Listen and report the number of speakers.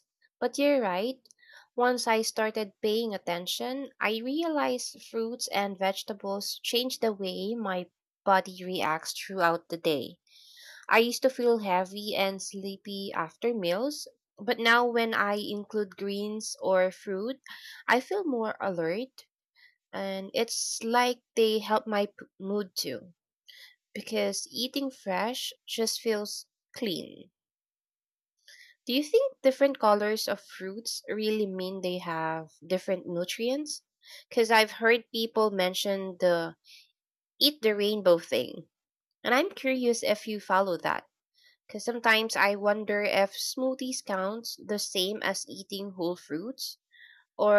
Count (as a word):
one